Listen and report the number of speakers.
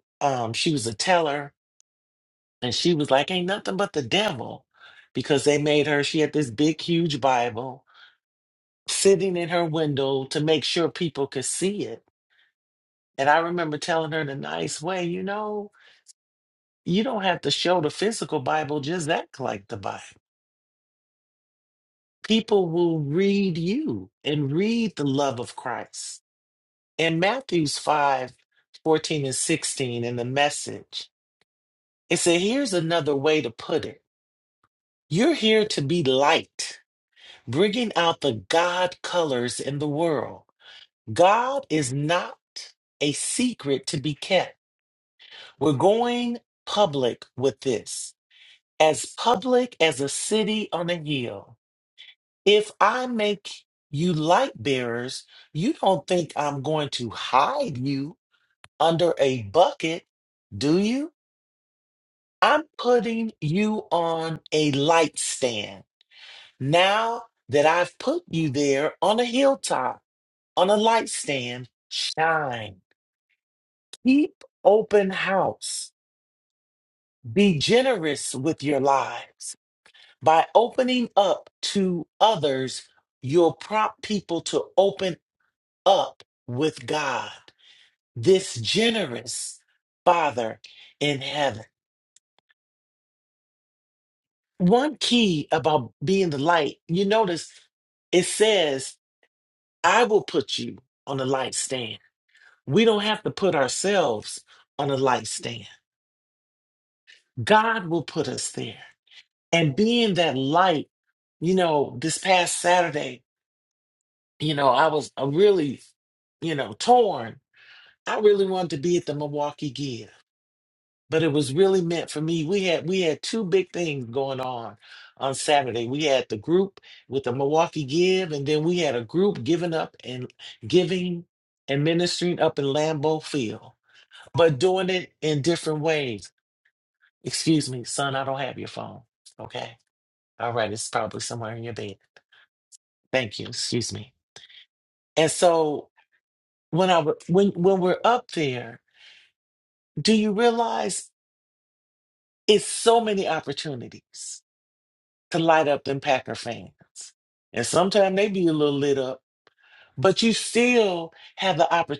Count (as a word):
one